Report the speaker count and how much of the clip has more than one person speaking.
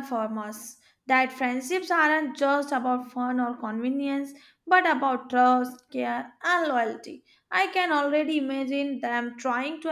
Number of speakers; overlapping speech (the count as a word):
one, no overlap